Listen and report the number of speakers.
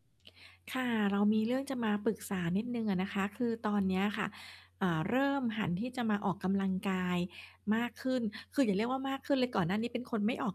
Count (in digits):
1